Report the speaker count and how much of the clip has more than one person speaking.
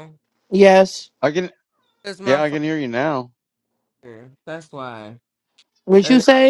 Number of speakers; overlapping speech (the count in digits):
3, about 6%